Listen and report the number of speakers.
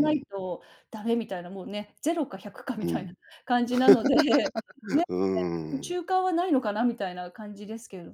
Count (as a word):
two